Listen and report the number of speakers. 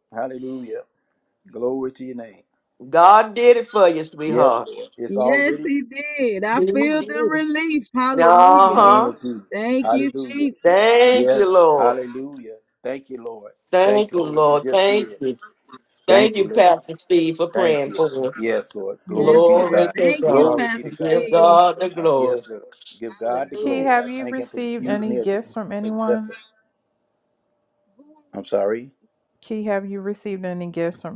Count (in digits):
4